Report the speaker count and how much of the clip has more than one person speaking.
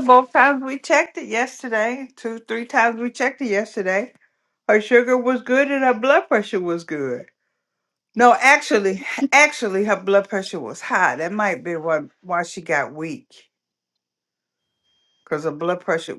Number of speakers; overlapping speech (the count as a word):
one, no overlap